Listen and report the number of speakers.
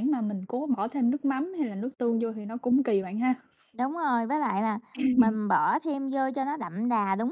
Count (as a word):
two